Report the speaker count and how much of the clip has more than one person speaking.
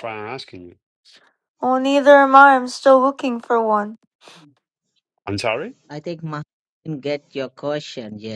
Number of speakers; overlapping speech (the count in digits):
3, no overlap